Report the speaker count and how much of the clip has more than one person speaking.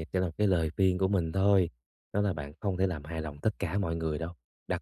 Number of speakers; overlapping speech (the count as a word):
one, no overlap